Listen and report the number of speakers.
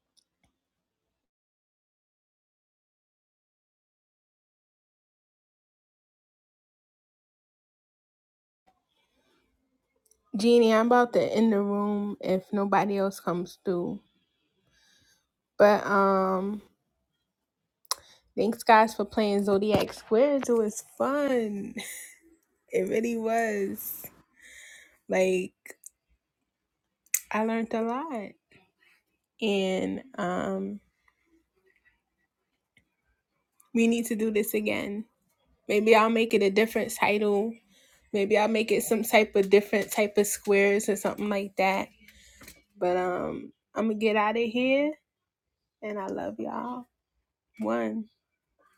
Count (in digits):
1